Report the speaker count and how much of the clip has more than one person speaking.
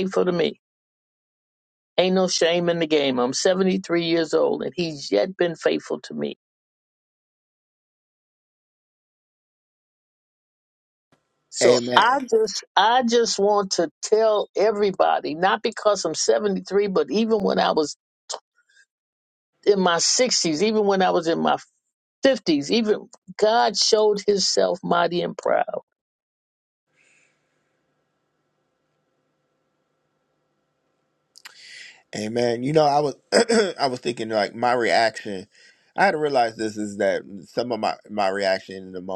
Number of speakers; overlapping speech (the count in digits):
2, about 1%